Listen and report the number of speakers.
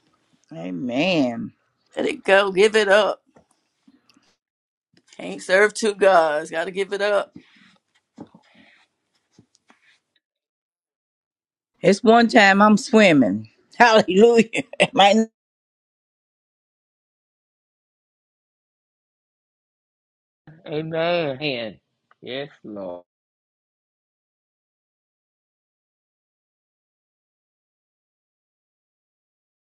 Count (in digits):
3